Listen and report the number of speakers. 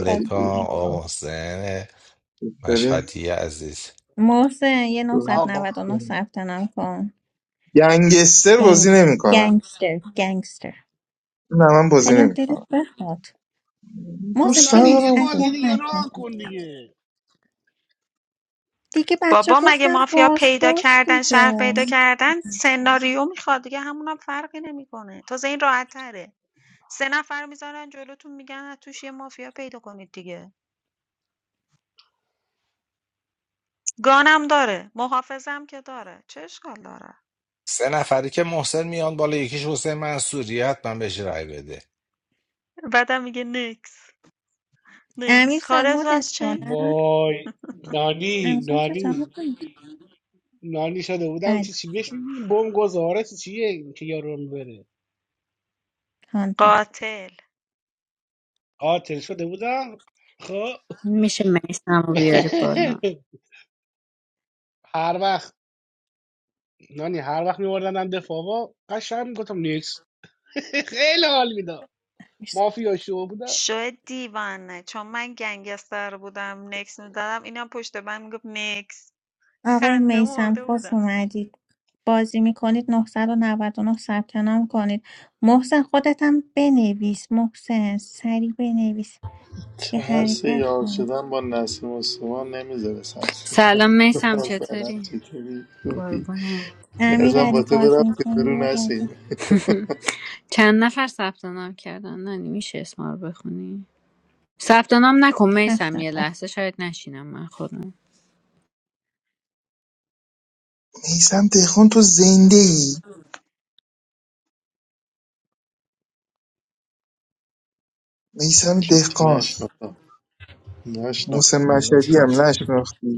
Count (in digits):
7